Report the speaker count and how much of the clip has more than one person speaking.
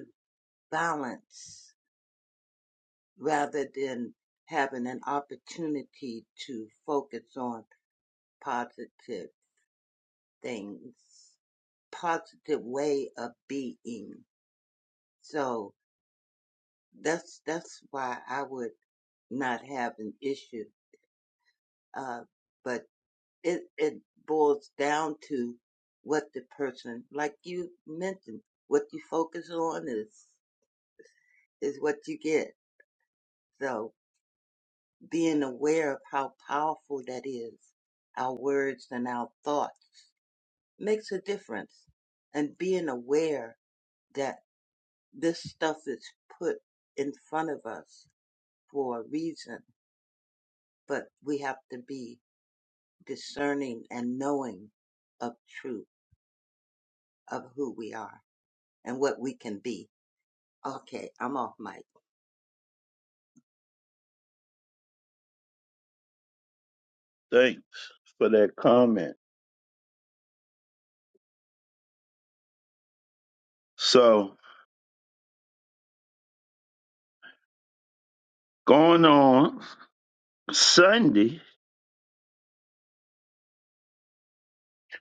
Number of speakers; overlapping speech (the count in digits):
2, no overlap